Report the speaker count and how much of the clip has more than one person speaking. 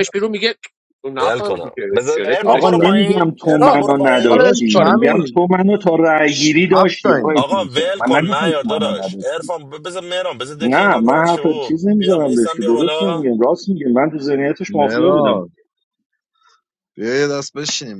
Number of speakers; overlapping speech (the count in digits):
4, about 60%